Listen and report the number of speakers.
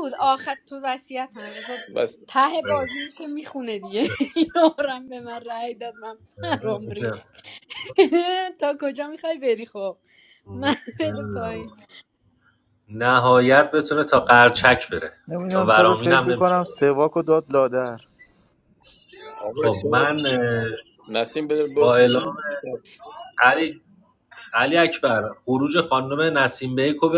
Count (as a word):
four